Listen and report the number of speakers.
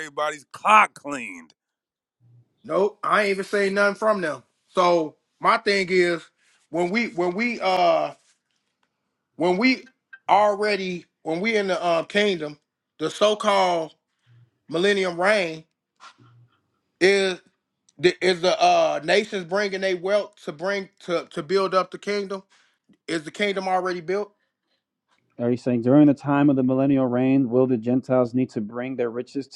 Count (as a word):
three